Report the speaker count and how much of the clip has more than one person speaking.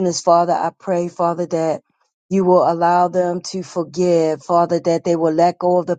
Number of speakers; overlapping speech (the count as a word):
one, no overlap